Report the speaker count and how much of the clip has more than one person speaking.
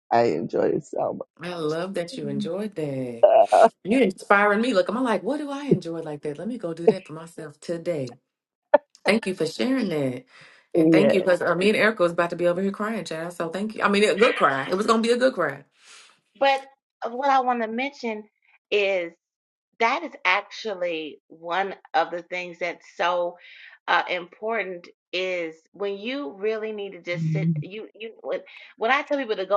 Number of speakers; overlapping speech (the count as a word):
three, about 2%